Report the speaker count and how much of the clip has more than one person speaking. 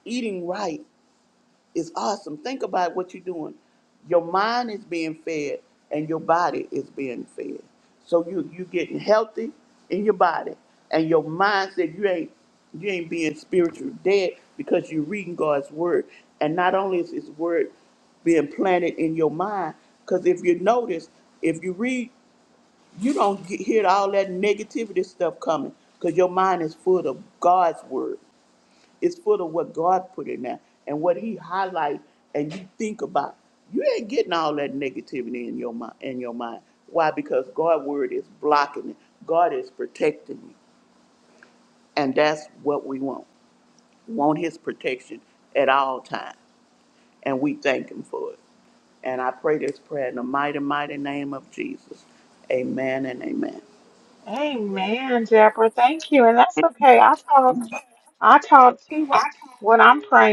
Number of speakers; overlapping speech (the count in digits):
2, no overlap